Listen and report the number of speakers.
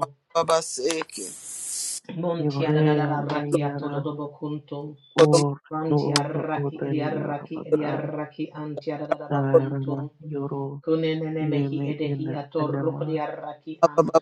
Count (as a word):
three